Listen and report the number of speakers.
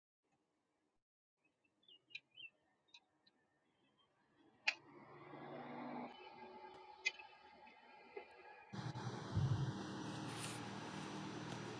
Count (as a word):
zero